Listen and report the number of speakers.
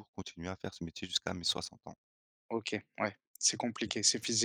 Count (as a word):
two